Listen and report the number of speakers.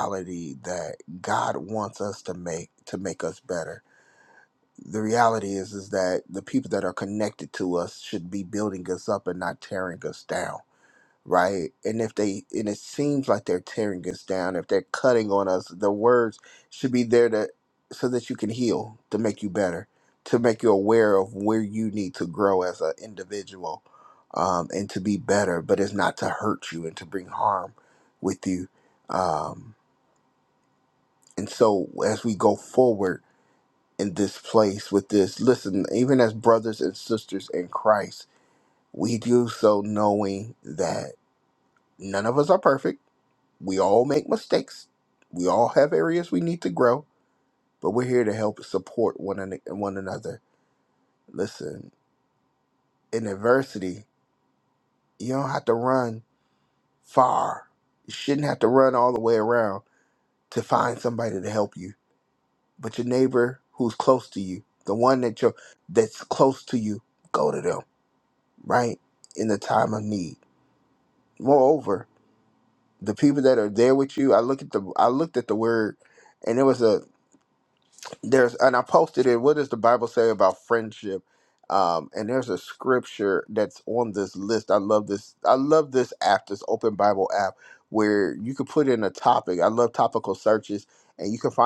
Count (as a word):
one